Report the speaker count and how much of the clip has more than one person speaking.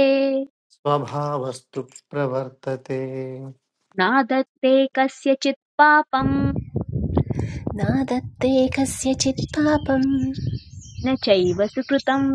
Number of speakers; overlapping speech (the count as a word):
three, no overlap